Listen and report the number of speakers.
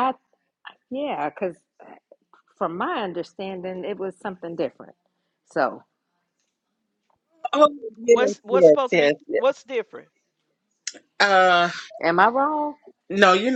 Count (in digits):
3